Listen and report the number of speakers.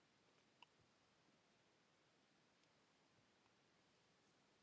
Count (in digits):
0